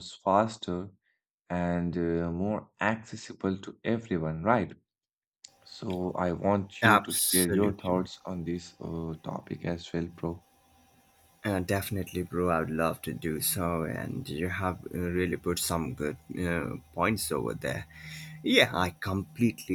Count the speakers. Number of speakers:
2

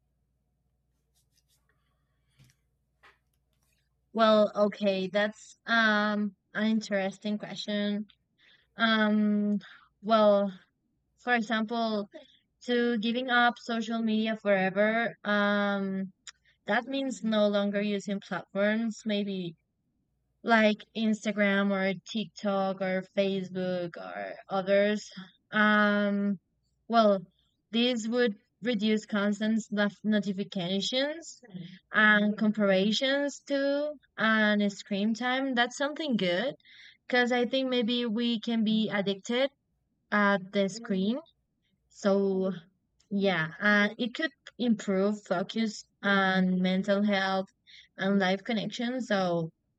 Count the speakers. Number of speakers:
1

